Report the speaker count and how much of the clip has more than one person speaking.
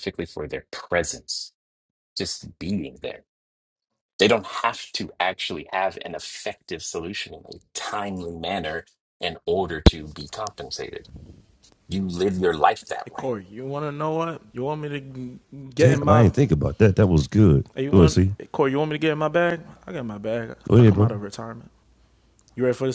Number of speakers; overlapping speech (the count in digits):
3, about 8%